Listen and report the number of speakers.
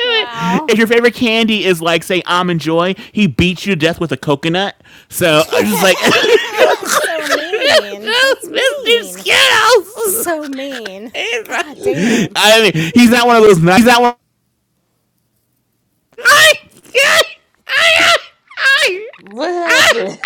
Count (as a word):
three